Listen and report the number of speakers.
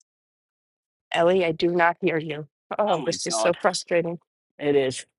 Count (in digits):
2